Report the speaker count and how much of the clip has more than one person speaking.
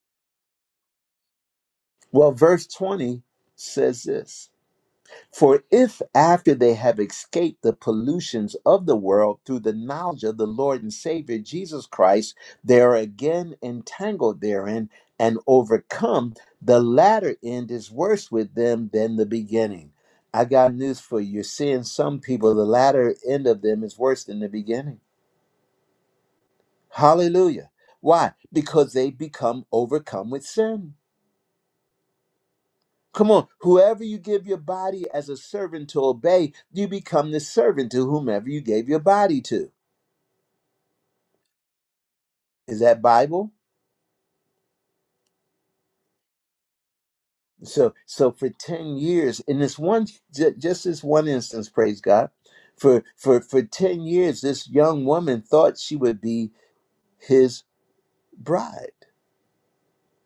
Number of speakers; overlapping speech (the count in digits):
1, no overlap